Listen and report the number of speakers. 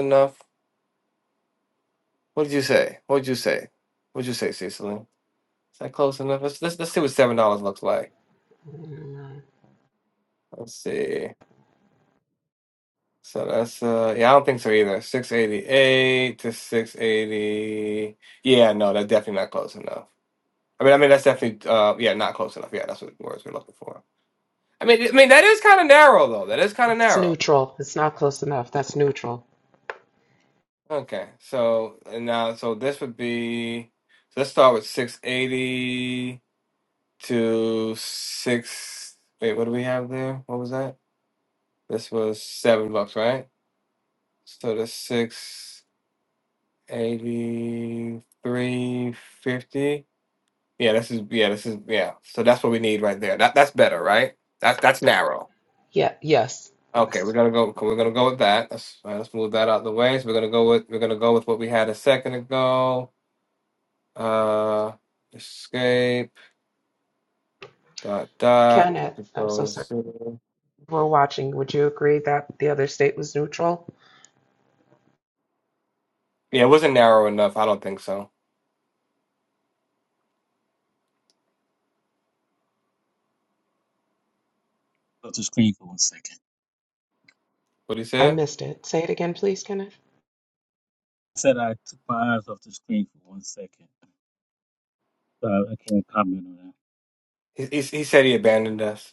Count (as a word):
three